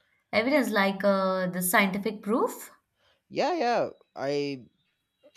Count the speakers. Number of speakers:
2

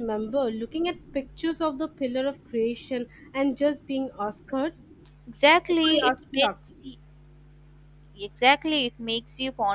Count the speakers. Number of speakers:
2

